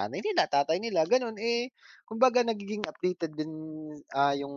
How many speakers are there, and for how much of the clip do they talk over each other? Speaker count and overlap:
1, no overlap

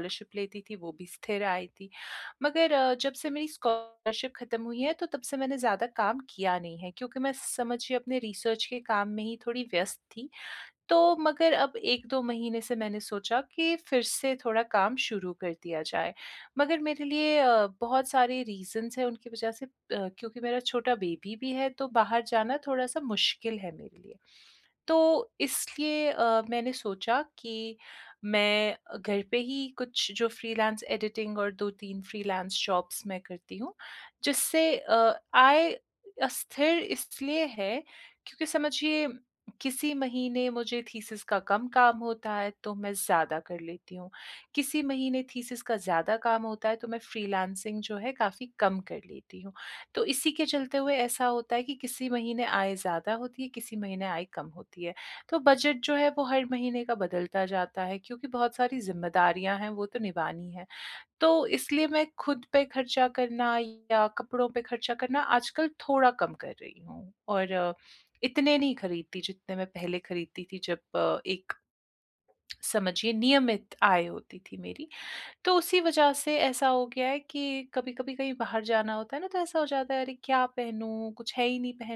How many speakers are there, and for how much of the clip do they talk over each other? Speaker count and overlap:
1, no overlap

